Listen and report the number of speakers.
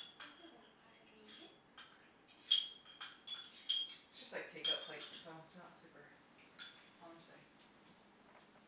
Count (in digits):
2